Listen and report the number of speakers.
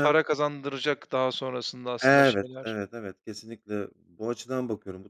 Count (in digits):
2